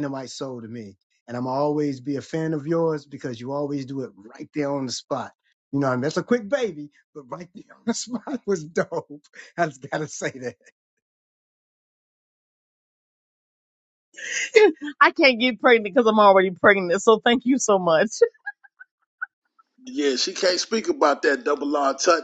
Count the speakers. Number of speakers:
three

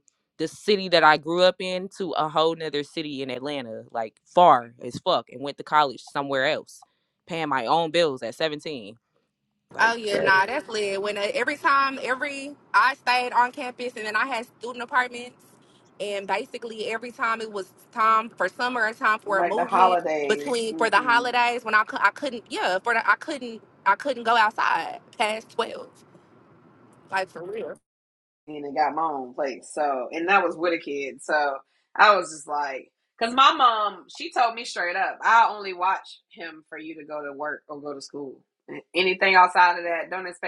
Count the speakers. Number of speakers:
three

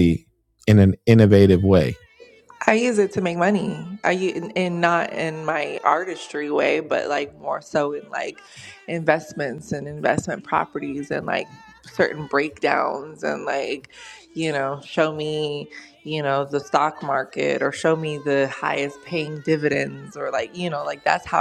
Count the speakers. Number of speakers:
two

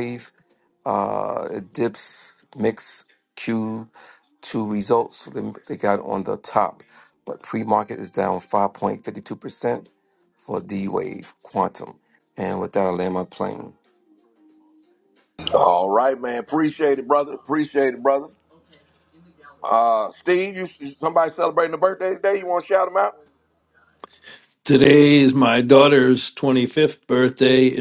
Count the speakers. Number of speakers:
three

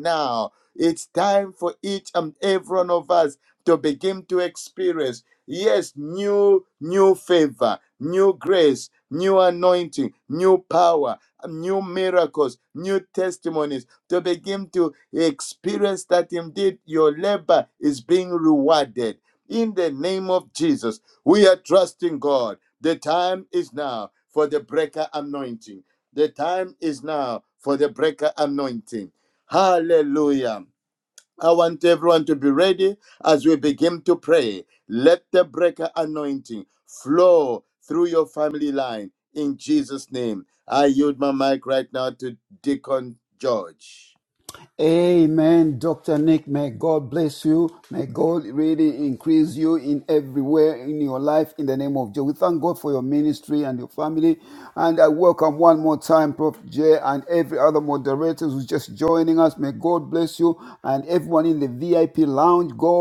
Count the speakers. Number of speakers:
two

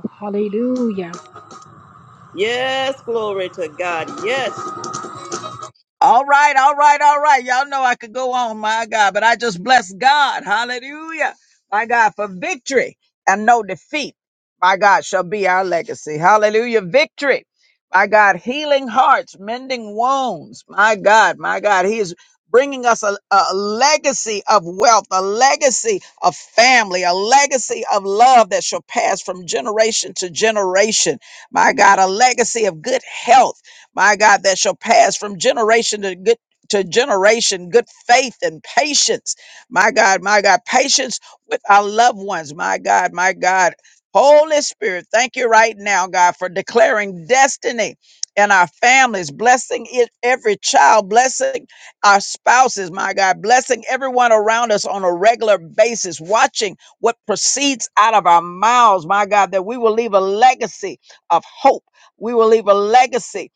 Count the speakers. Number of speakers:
three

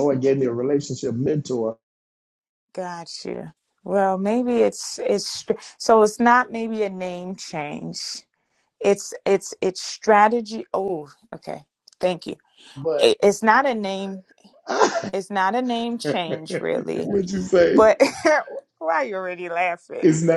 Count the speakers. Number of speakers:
two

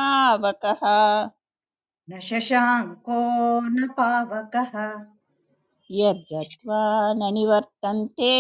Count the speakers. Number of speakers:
two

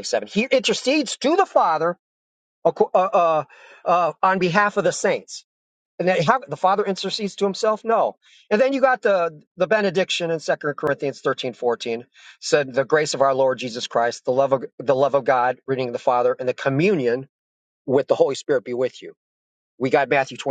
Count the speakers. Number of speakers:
one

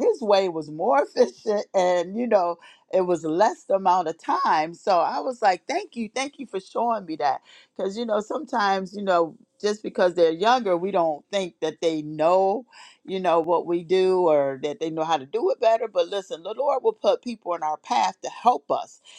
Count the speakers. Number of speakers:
one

